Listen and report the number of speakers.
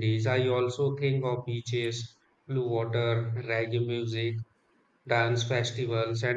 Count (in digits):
1